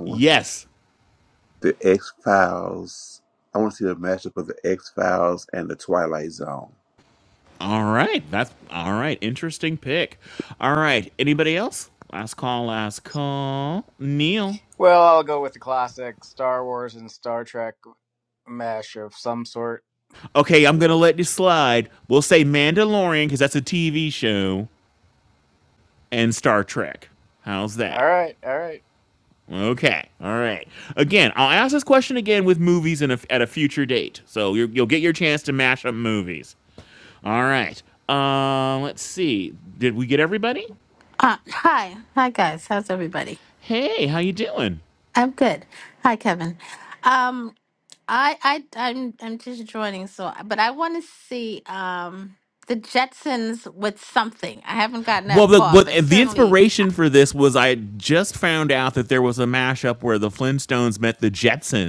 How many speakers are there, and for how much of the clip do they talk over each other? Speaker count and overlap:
four, about 3%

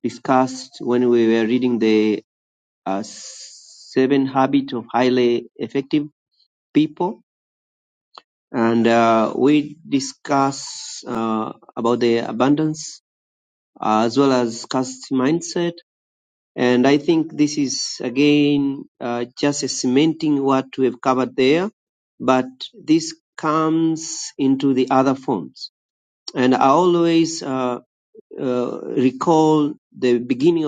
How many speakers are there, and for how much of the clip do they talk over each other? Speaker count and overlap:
one, no overlap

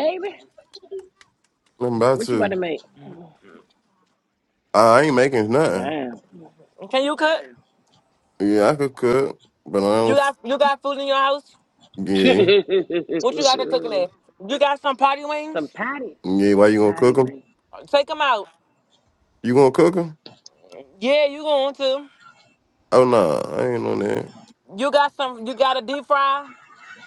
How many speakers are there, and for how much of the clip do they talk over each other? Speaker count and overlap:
three, about 4%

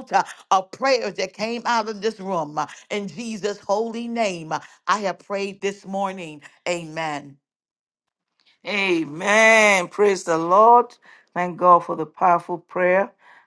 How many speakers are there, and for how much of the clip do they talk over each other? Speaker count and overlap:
two, no overlap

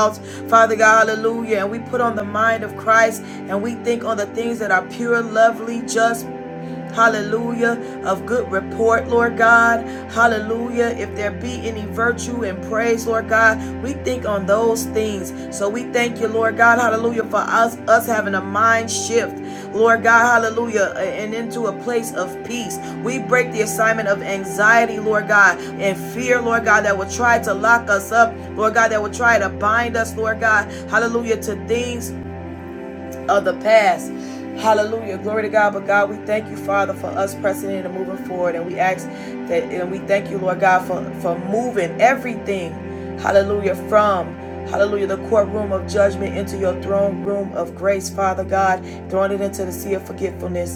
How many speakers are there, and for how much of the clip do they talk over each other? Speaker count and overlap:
one, no overlap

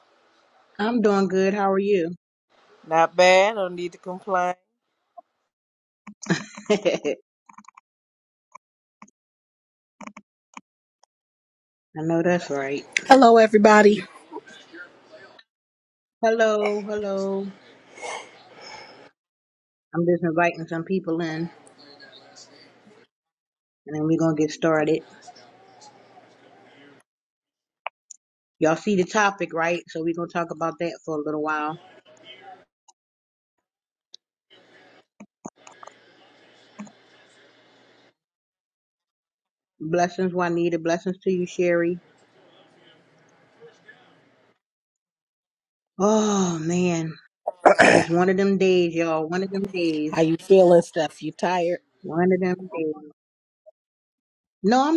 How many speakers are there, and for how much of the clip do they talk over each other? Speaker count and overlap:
three, under 1%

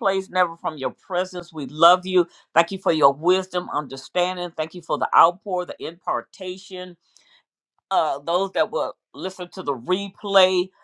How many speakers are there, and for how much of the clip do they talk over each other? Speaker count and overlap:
one, no overlap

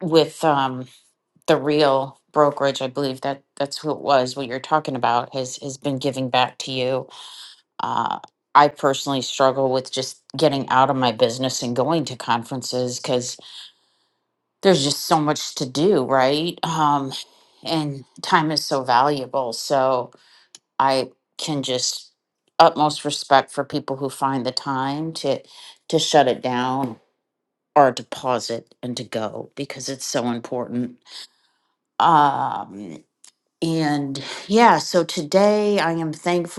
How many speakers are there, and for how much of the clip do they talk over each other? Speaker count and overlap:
one, no overlap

